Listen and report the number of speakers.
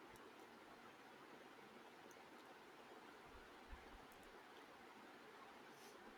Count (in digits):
0